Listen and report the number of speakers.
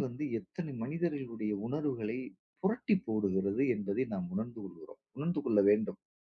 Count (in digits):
1